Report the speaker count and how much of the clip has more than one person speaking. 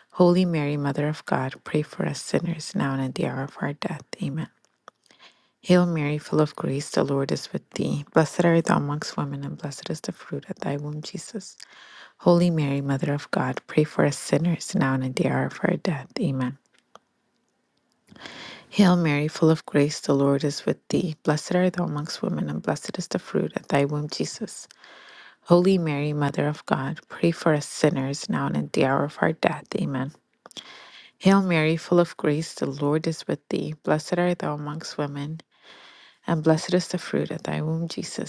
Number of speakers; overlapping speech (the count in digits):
1, no overlap